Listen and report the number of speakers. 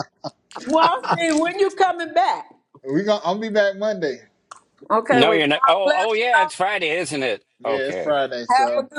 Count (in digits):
3